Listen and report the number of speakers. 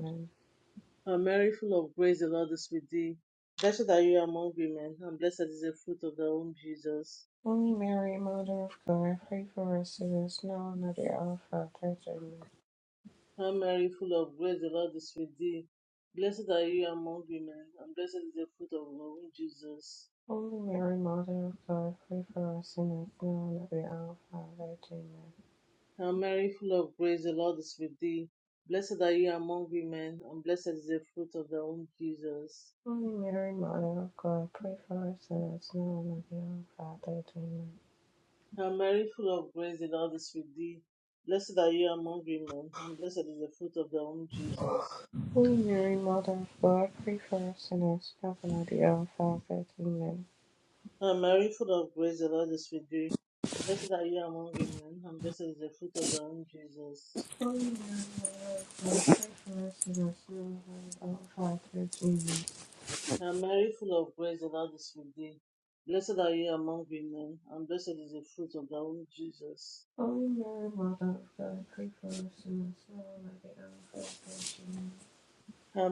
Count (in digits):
2